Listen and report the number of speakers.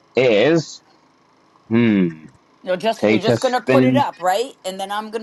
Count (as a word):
two